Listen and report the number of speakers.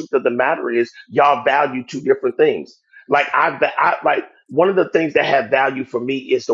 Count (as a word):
one